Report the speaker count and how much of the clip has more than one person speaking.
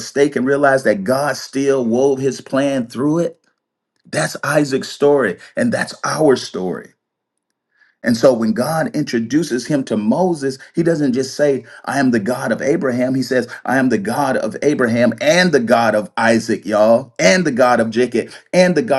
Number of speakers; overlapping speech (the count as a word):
one, no overlap